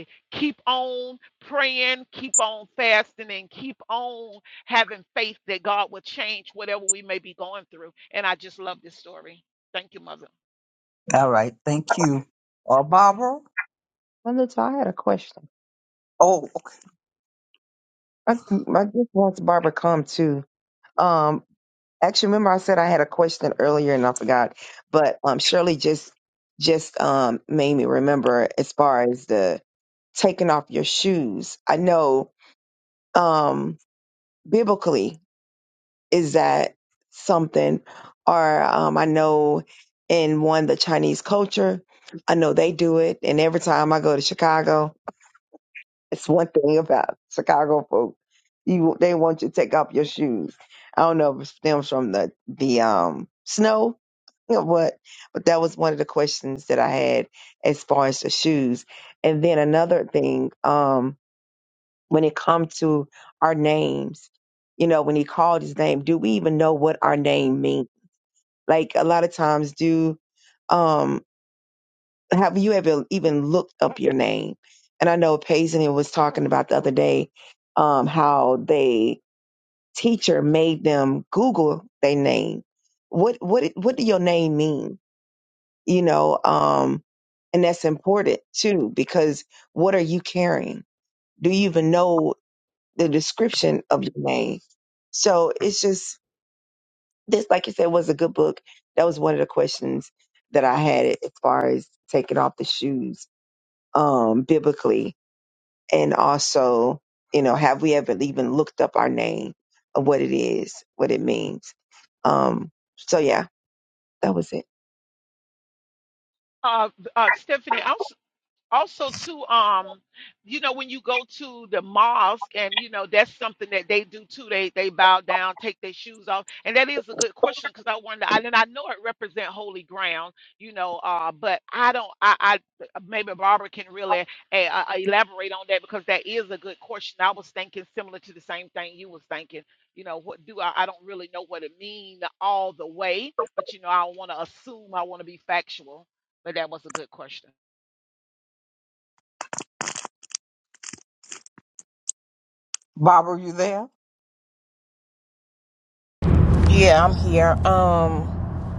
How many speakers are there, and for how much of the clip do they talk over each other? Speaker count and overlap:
4, no overlap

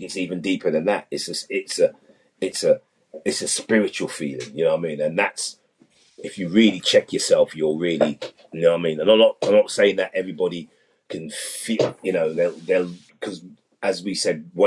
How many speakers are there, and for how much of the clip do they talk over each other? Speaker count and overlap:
1, no overlap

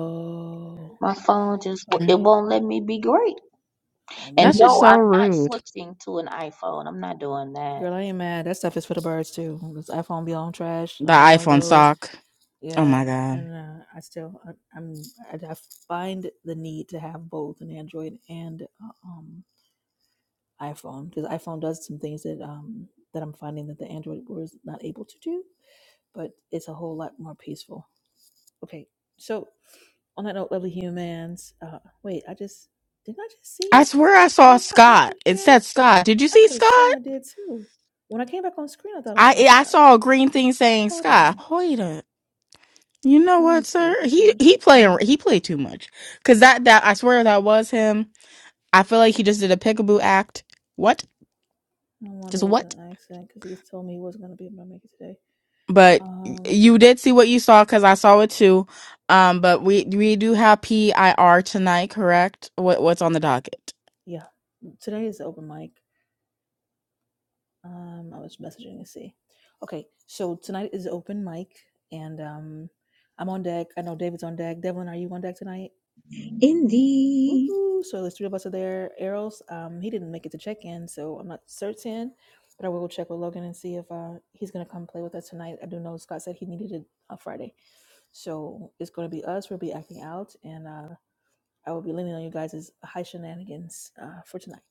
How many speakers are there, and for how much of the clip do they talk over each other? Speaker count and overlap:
4, about 8%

